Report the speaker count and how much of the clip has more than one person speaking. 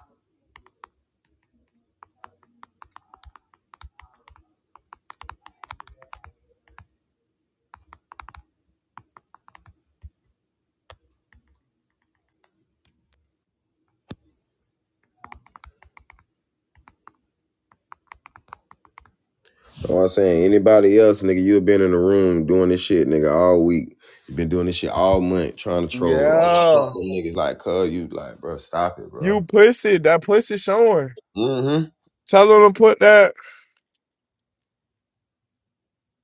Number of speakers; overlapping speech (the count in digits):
2, about 3%